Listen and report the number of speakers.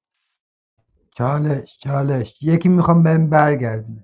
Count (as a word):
one